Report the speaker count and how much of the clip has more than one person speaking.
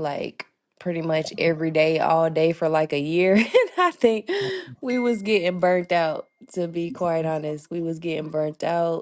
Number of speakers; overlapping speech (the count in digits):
1, no overlap